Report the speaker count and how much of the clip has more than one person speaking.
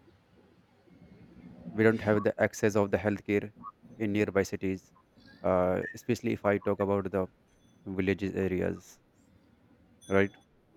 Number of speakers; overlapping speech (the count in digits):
1, no overlap